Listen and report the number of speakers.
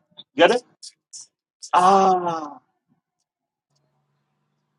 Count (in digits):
1